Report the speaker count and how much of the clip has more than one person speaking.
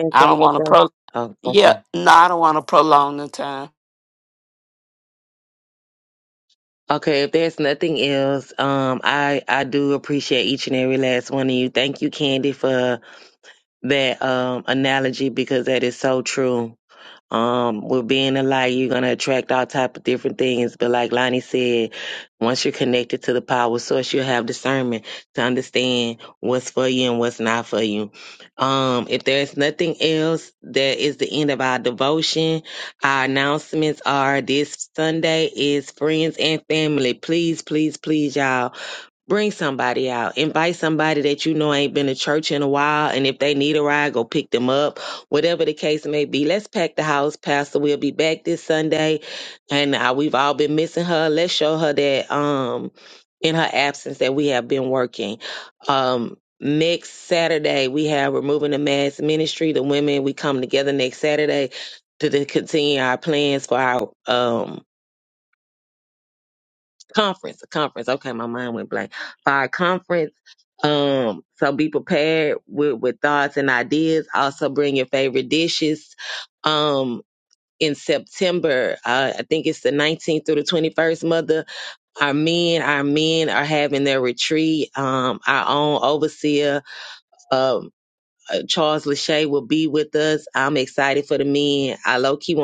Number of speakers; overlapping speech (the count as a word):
two, about 1%